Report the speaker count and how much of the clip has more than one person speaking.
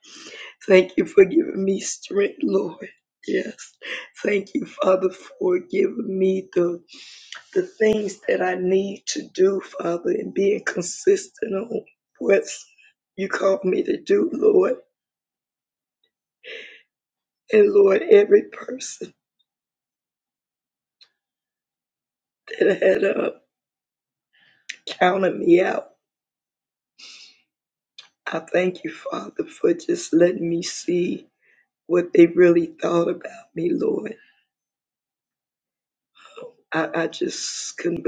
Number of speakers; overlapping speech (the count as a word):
one, no overlap